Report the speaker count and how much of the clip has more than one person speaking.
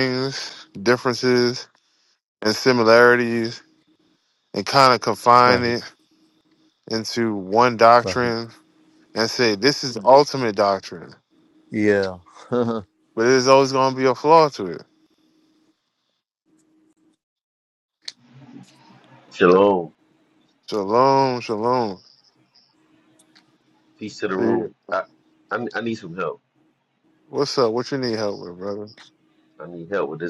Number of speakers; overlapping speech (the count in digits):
3, about 3%